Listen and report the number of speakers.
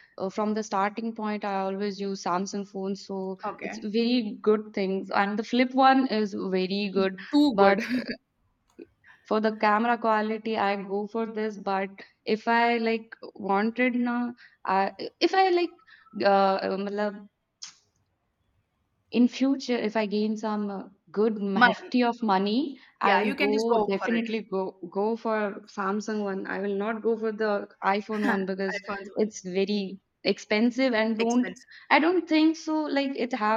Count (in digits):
2